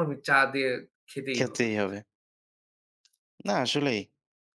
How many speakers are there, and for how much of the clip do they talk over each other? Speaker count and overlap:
two, about 7%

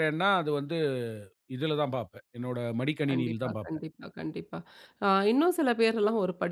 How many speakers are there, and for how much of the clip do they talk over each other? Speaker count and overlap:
two, about 11%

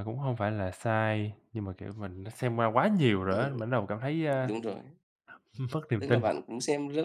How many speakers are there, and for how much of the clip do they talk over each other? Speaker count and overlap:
two, about 8%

